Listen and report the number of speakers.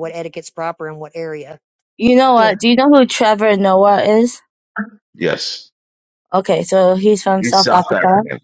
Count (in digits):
3